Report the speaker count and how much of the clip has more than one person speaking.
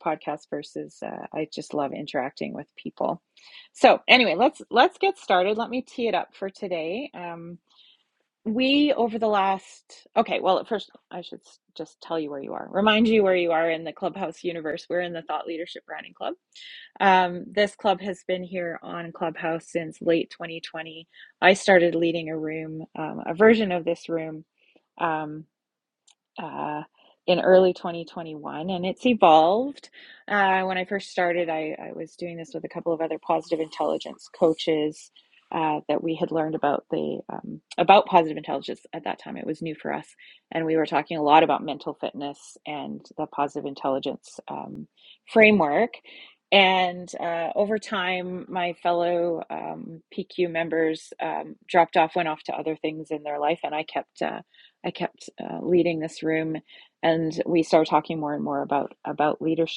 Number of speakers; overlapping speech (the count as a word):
one, no overlap